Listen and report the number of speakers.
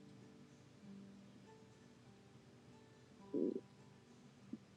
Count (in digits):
0